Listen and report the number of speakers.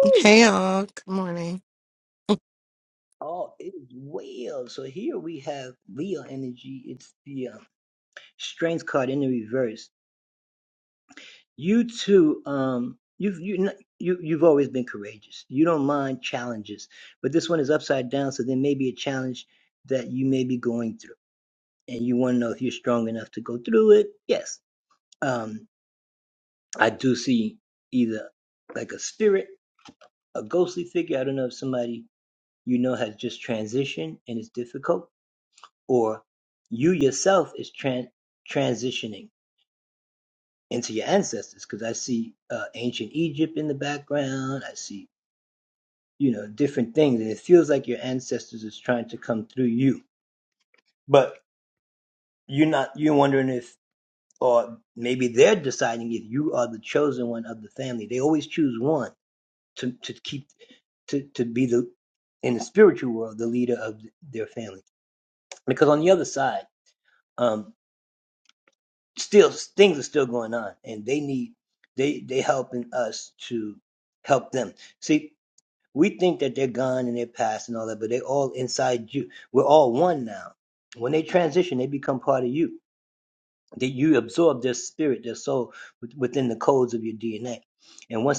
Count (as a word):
two